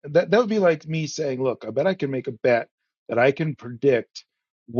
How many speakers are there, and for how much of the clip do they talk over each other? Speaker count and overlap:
one, no overlap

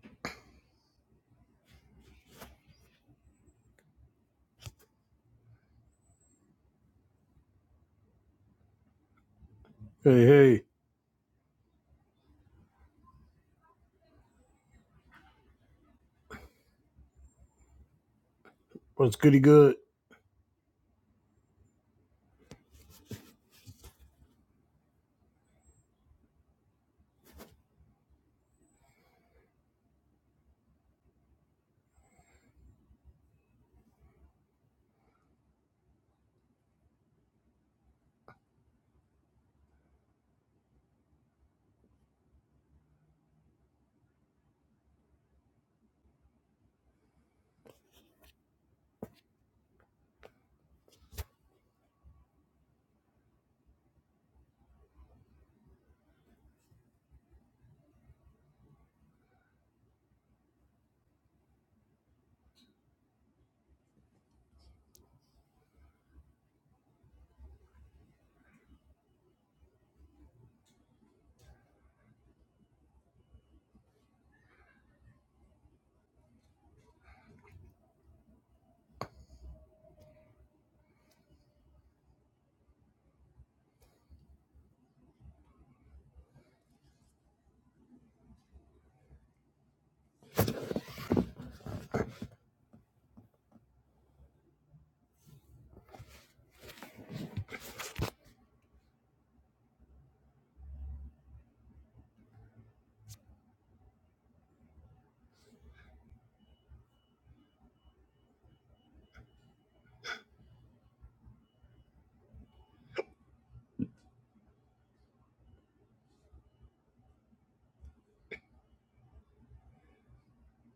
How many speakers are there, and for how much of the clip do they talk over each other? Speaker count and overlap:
one, no overlap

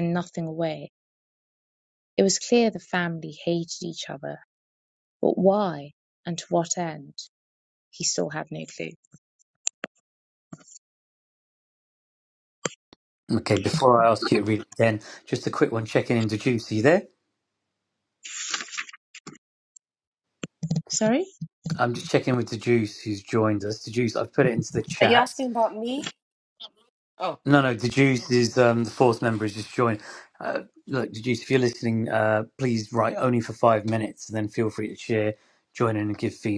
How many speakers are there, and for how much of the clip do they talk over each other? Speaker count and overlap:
three, about 1%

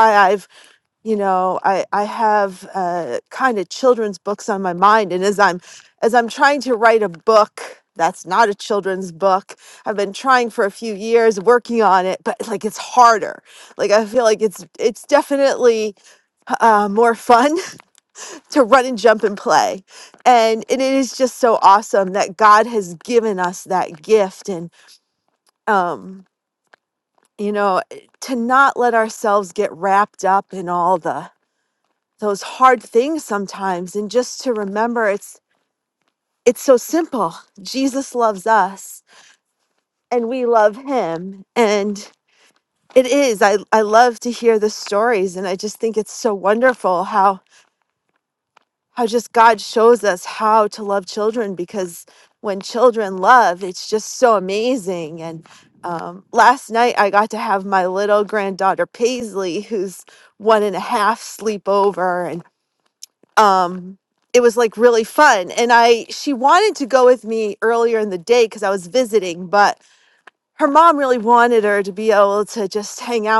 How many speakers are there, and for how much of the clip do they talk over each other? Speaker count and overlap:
one, no overlap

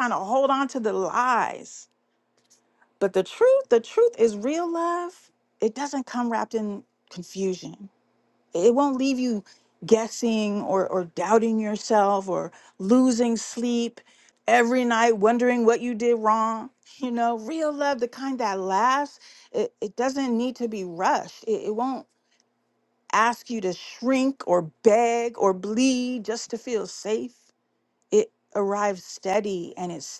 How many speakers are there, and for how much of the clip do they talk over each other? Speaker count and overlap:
one, no overlap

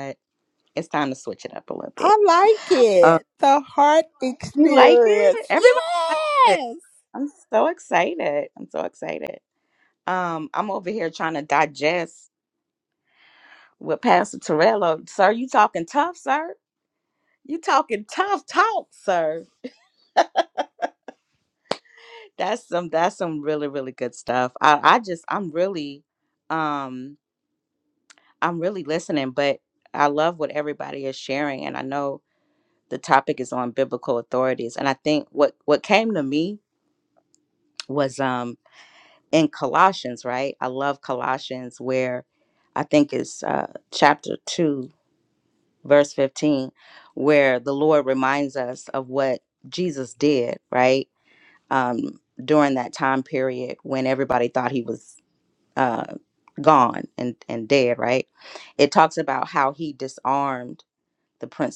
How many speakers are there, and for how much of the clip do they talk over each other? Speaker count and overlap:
two, about 2%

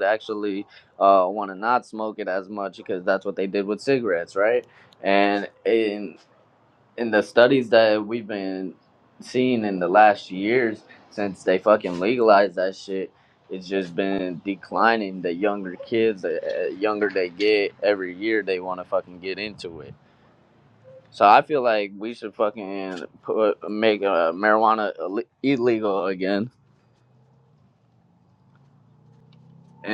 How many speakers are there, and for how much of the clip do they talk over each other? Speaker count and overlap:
one, no overlap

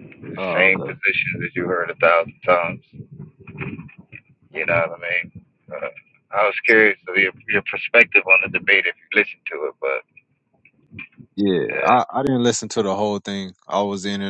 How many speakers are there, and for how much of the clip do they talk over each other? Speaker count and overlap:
two, about 6%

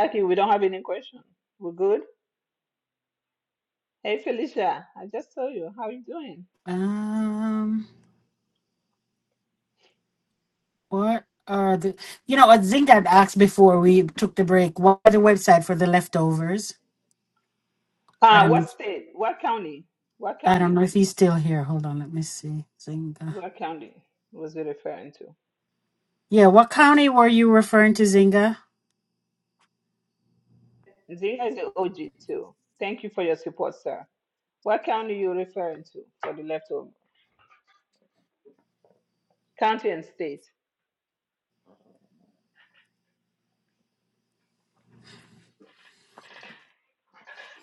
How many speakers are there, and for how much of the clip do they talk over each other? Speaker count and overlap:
two, about 1%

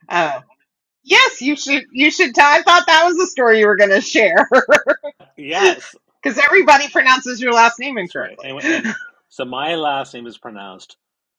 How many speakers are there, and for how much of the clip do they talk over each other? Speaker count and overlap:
two, about 5%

